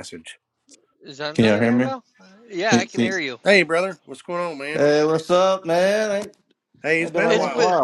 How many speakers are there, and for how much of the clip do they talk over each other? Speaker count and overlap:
three, about 23%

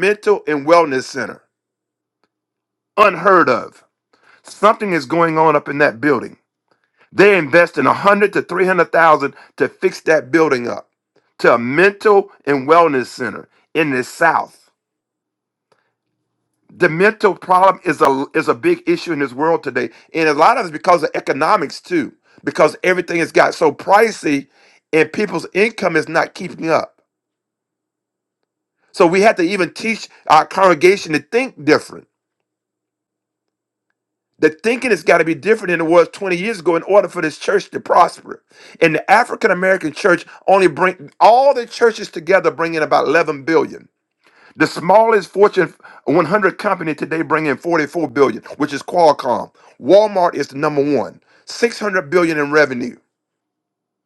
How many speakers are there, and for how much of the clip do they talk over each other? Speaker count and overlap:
one, no overlap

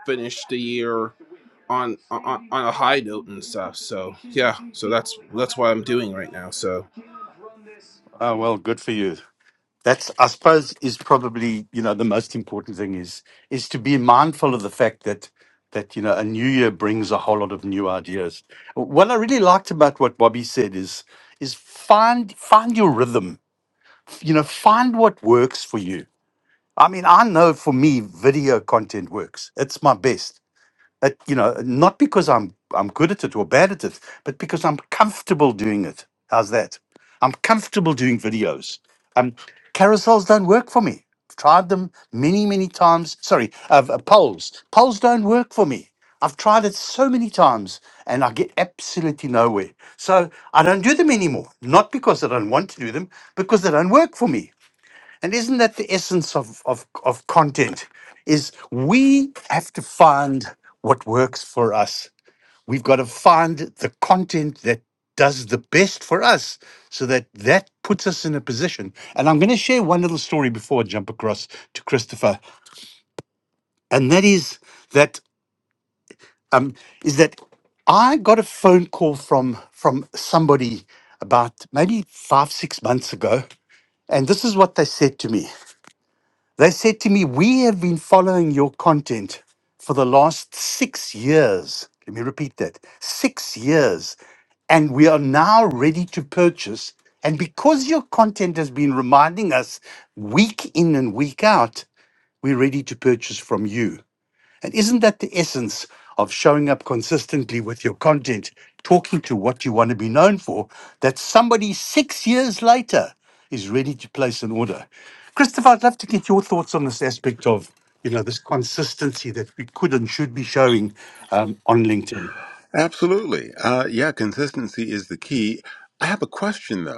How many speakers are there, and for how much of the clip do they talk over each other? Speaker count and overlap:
three, no overlap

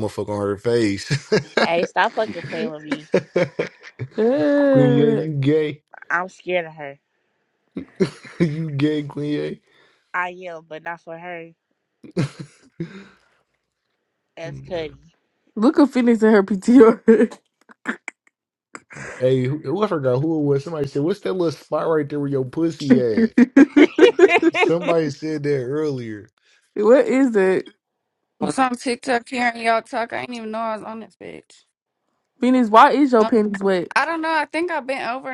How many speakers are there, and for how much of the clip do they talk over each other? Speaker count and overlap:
four, about 2%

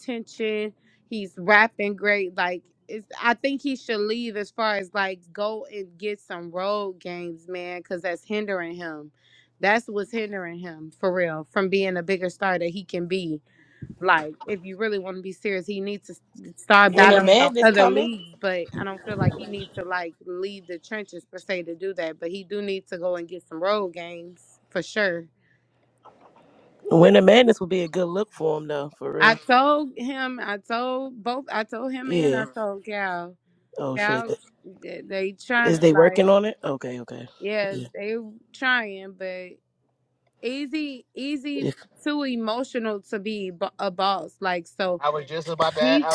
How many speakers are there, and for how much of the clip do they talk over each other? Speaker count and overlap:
three, about 7%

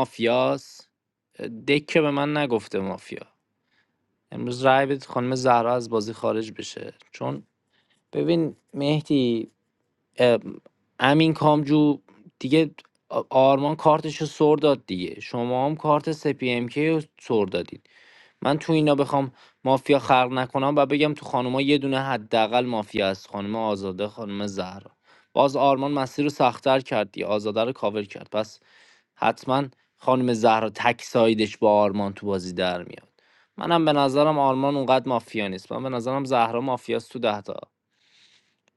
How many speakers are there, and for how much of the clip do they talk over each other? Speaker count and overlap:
one, no overlap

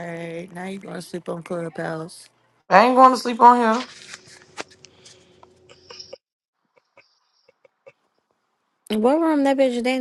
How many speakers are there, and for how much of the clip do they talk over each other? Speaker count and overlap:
three, no overlap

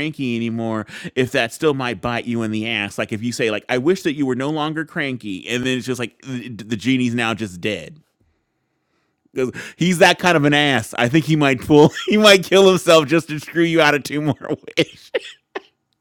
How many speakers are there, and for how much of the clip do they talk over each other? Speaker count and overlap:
one, no overlap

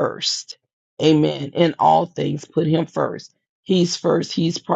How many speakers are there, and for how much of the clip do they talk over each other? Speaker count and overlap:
one, no overlap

